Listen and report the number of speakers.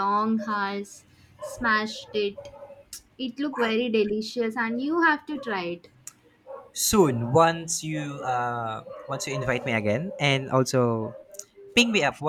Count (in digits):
2